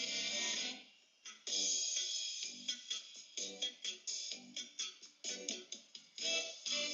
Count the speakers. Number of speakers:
0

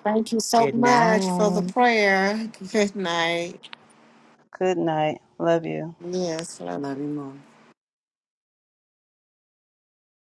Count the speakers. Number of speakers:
3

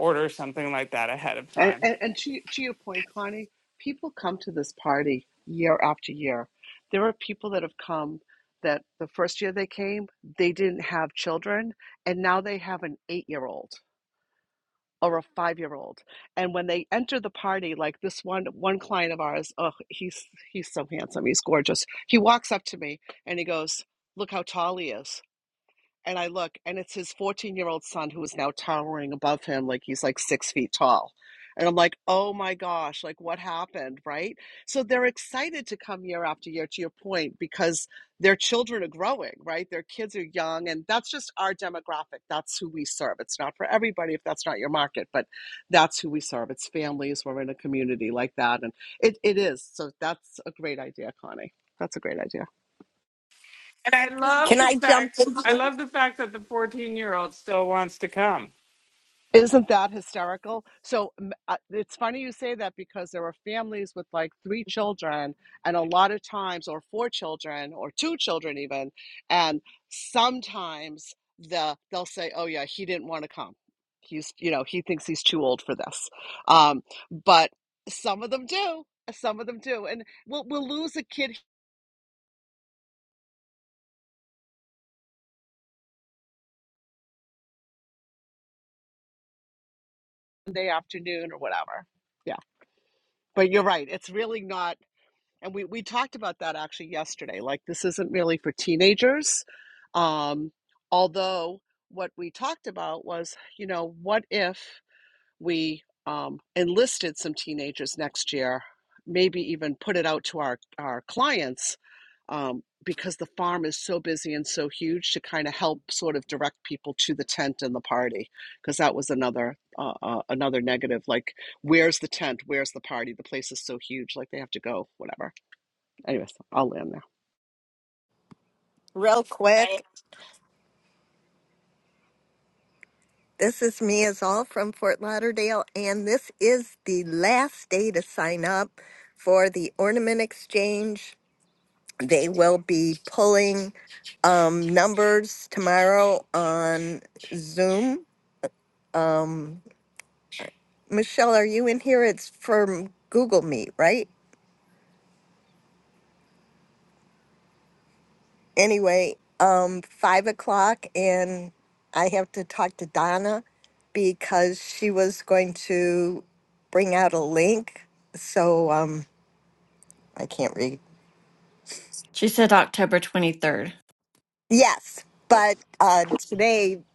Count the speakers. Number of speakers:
4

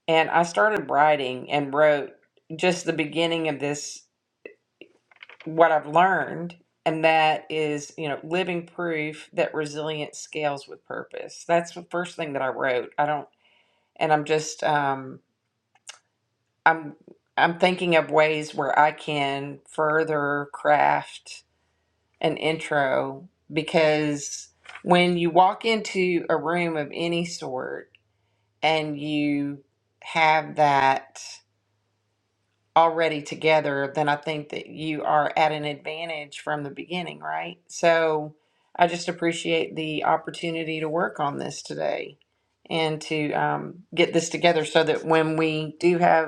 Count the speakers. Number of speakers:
1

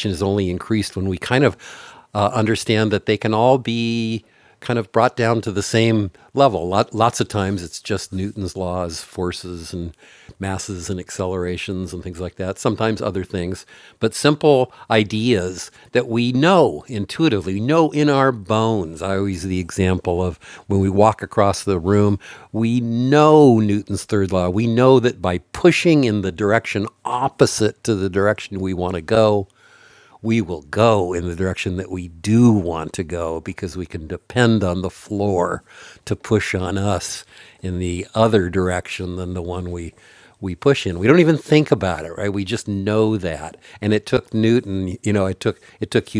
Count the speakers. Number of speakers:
1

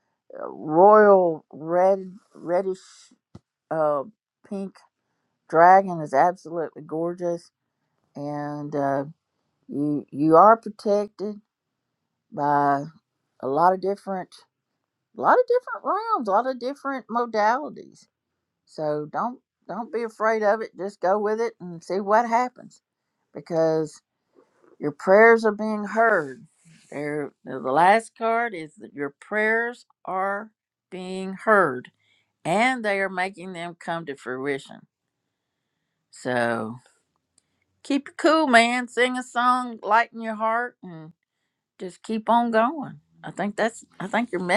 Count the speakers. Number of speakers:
1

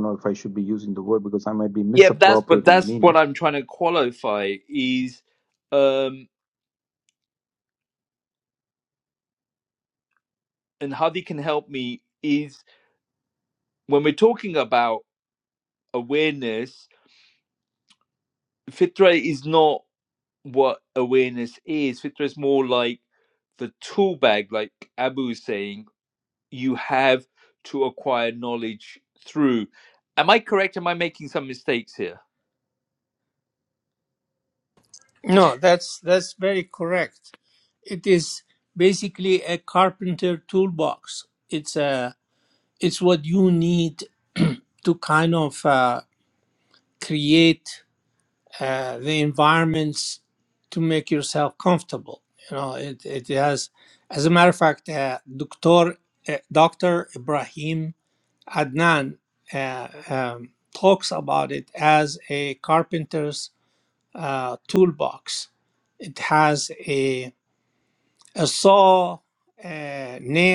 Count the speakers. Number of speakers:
3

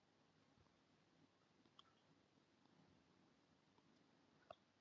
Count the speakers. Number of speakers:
0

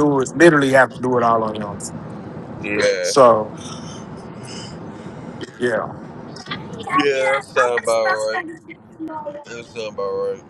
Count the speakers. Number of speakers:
2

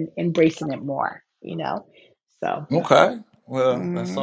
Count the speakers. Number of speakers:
2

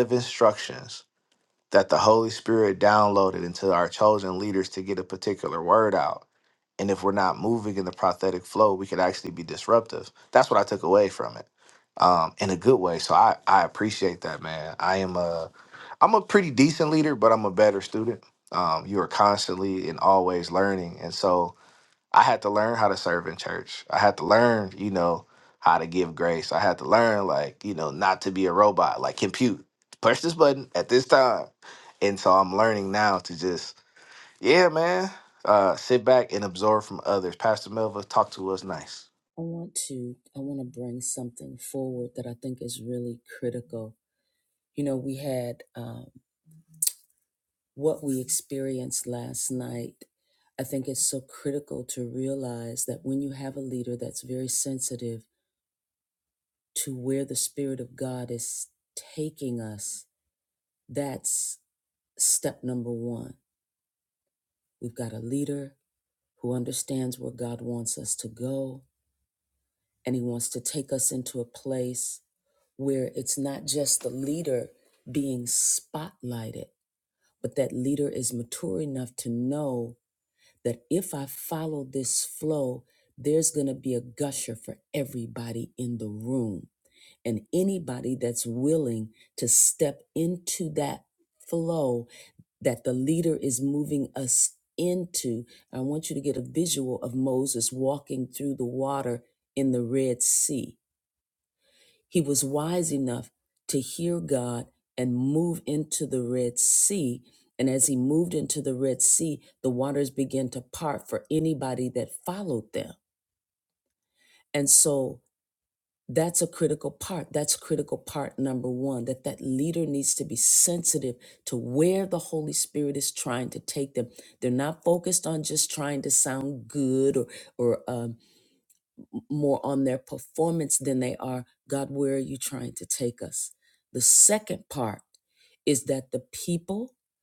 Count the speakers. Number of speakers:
2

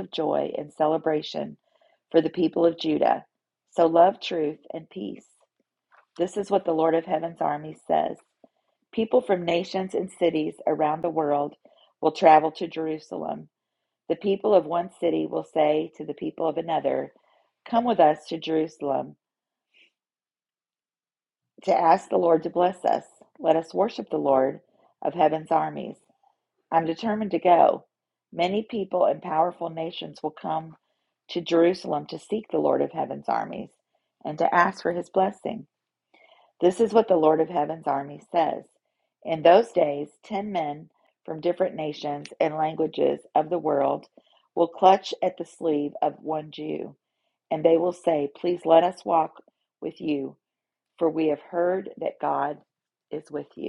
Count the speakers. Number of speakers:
1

